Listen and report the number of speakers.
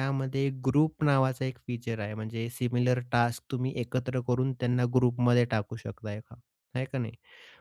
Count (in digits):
1